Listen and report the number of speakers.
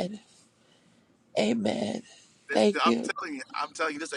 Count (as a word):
two